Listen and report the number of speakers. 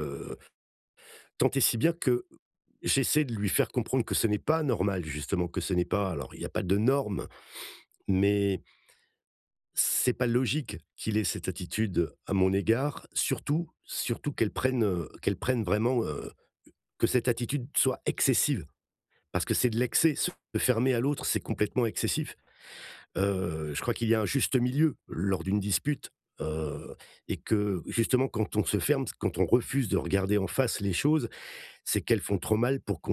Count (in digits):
1